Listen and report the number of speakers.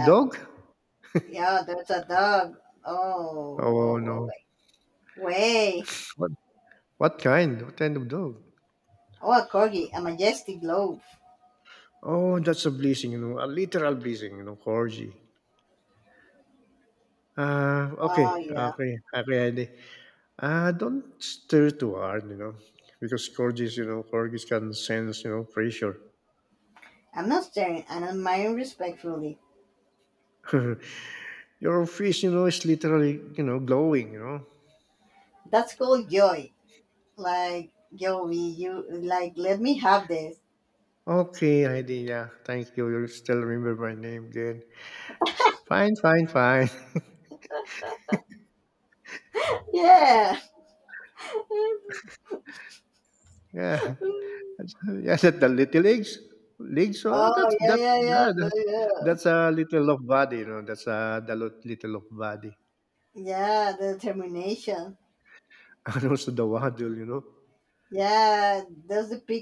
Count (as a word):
two